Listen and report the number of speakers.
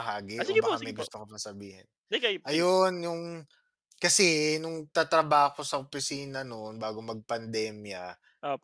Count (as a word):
two